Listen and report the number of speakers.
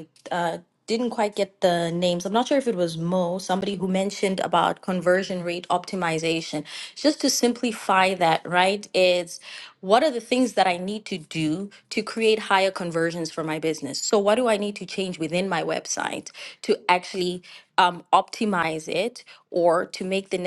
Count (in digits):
1